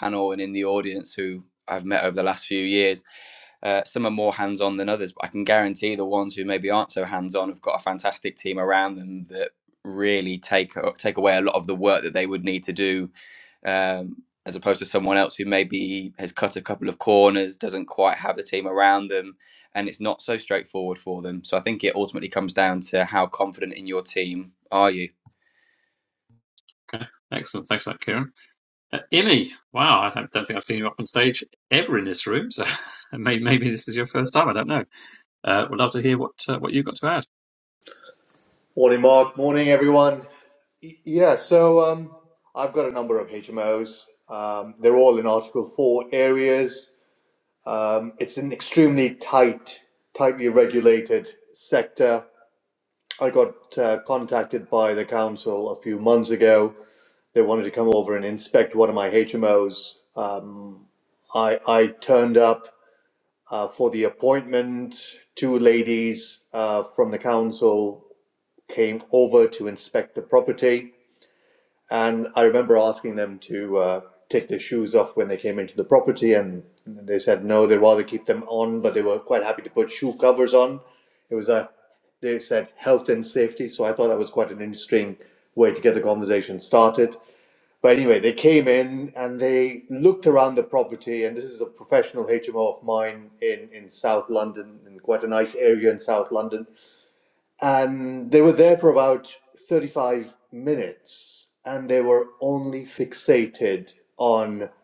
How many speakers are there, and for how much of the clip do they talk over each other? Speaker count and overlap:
3, no overlap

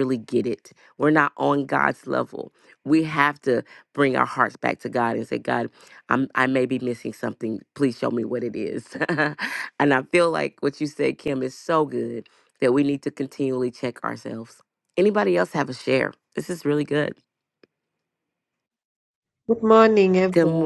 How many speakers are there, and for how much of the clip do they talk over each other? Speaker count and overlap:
2, about 2%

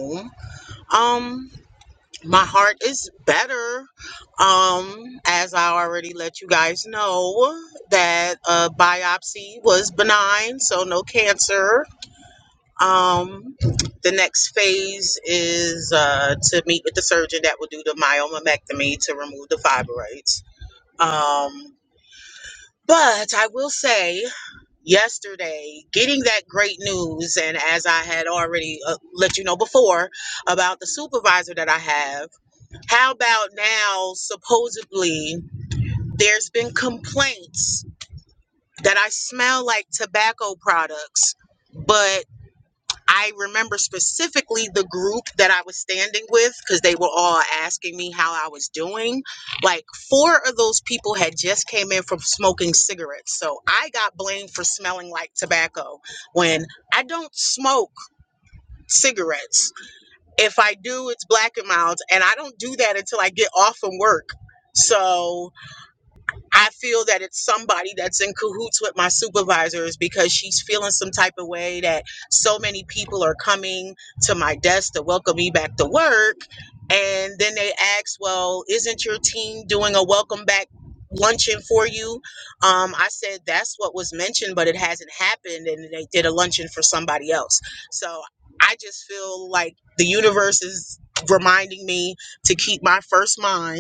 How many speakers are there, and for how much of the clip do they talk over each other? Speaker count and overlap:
1, no overlap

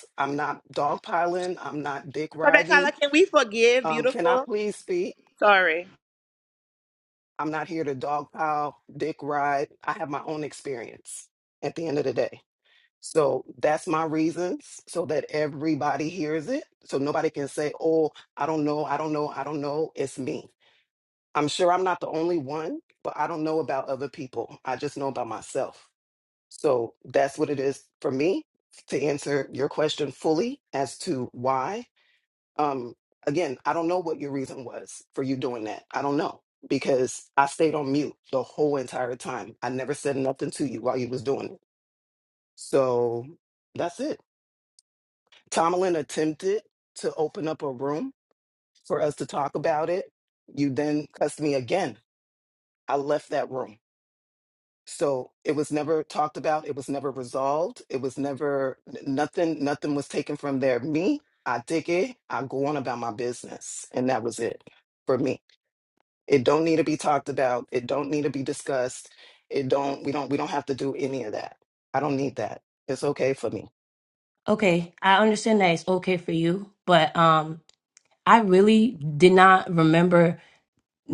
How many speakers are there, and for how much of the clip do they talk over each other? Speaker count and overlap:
3, about 1%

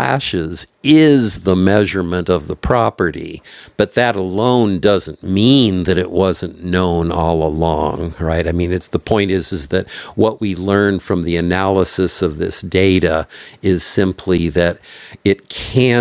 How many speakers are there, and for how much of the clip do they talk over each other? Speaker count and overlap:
1, no overlap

